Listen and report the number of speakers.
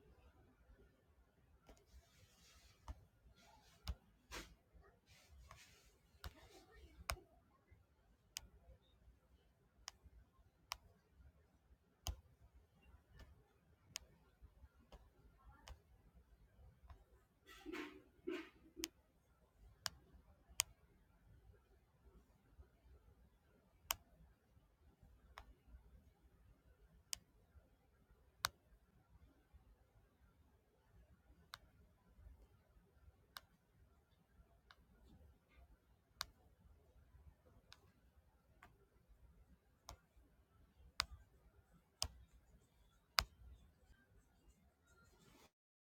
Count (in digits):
0